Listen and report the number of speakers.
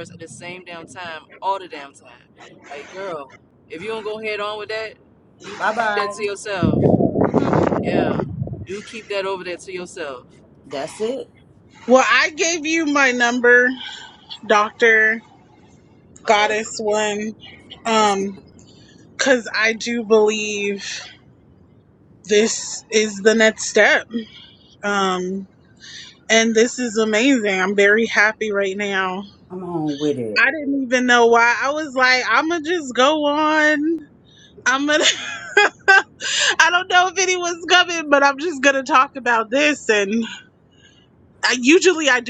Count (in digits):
3